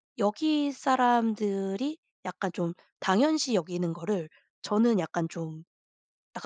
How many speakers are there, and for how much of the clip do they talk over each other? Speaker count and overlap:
1, no overlap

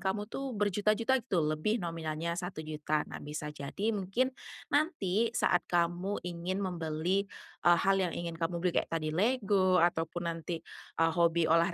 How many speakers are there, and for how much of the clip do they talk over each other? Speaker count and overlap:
1, no overlap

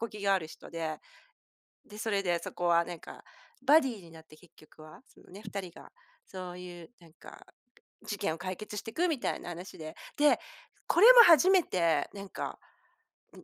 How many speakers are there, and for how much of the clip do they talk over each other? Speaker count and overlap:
1, no overlap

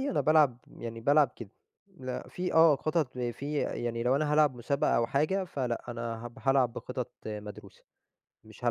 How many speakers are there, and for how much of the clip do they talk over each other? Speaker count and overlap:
1, no overlap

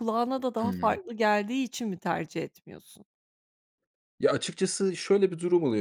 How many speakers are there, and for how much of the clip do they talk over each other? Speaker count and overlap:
2, about 7%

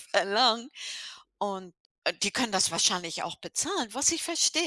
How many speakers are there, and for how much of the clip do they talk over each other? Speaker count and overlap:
1, no overlap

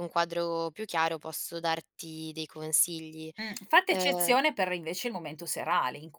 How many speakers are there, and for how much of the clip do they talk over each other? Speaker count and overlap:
2, about 8%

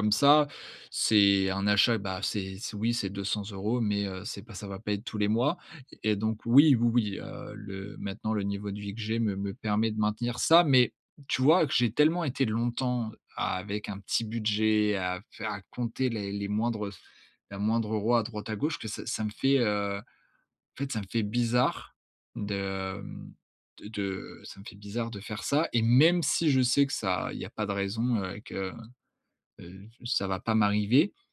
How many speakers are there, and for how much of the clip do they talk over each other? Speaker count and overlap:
1, no overlap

